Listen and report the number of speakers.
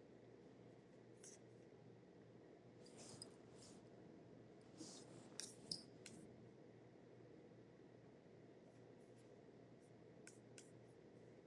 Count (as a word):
zero